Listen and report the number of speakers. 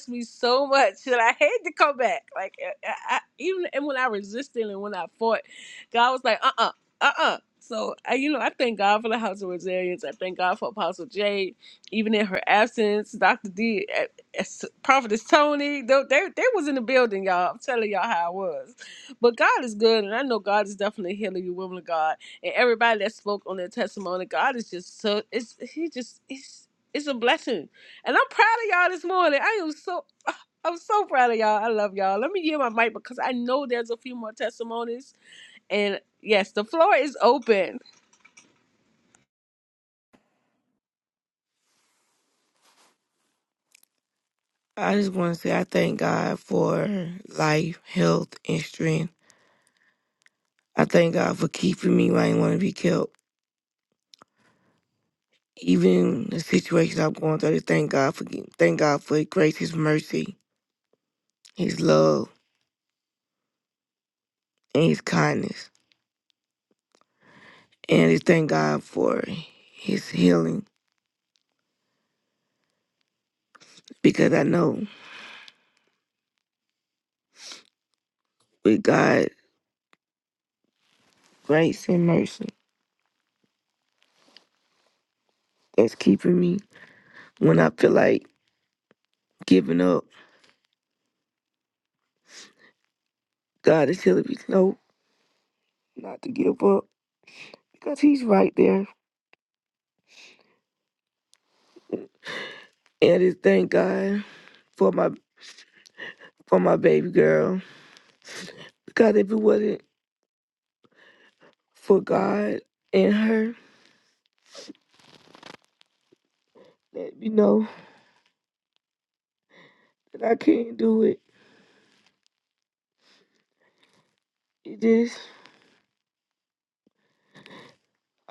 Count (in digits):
2